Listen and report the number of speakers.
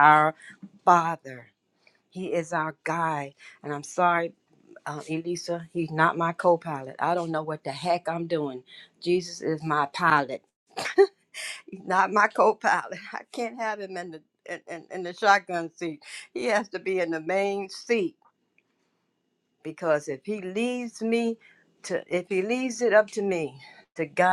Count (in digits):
1